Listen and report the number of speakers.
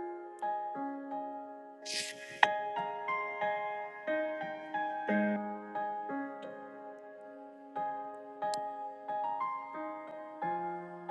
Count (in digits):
0